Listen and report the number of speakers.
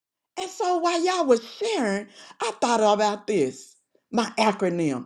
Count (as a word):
one